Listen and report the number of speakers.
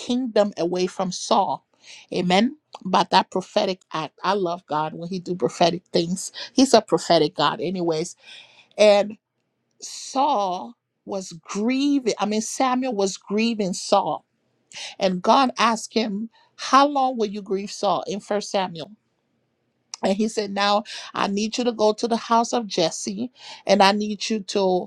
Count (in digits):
1